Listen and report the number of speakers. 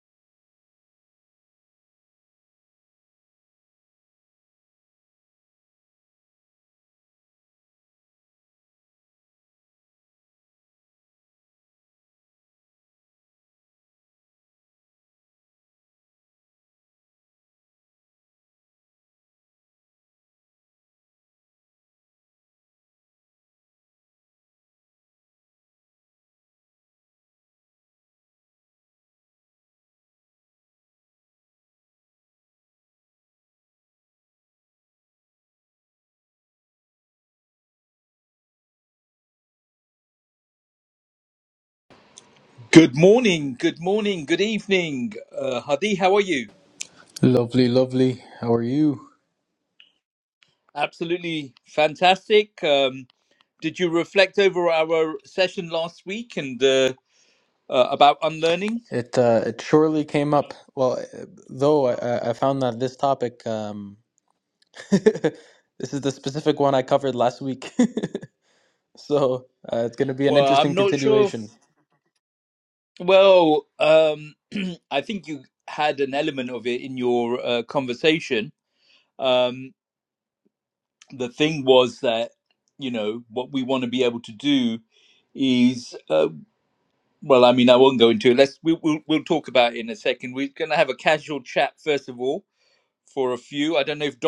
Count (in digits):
2